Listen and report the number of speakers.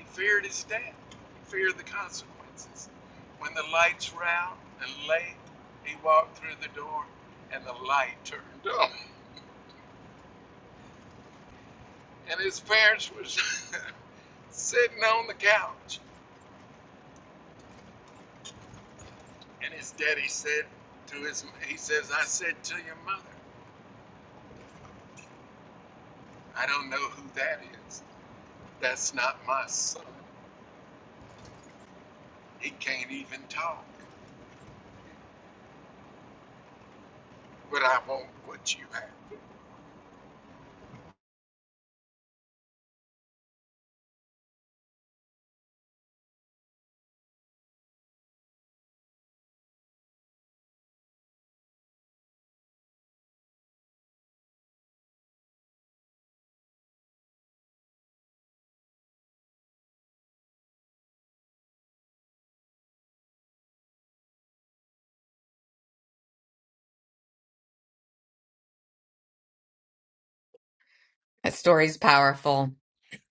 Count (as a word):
two